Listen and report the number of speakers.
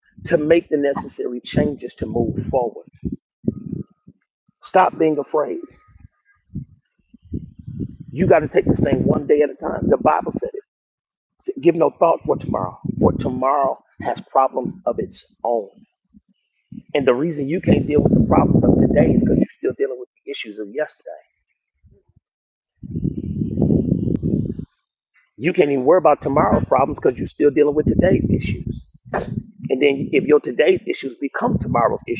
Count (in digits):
1